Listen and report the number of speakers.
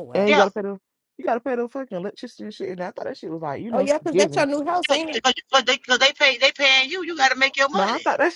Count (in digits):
3